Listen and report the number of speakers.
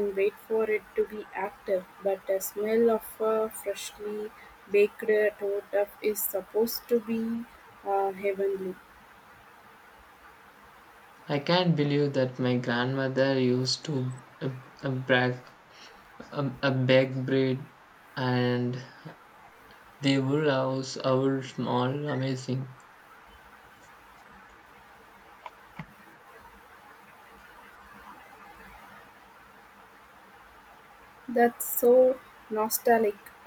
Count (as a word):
two